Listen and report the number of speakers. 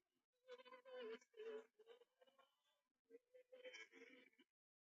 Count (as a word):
zero